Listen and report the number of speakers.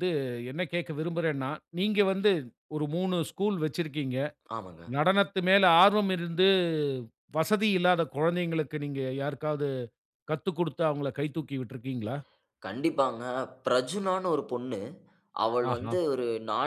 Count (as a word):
two